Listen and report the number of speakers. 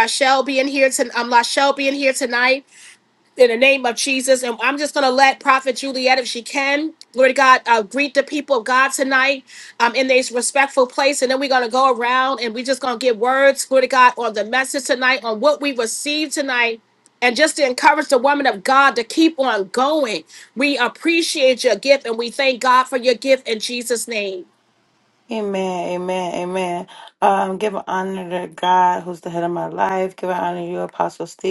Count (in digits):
2